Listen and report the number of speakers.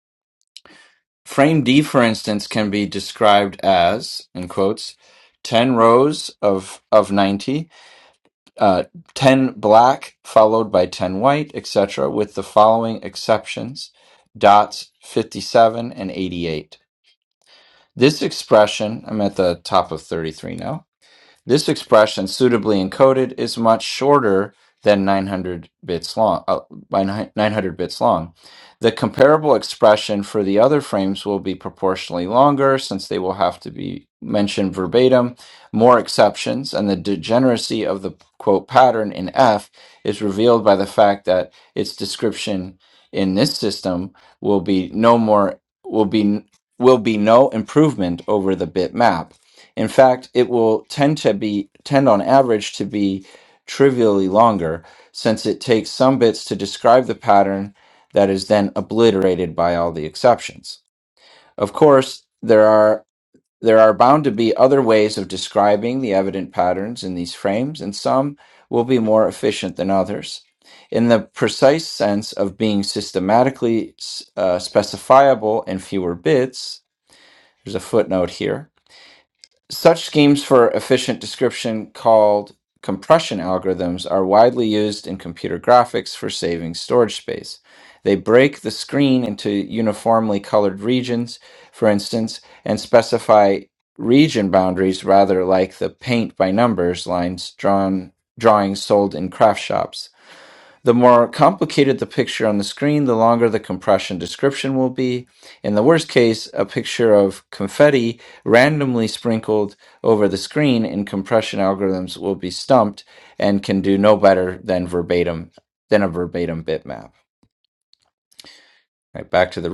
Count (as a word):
one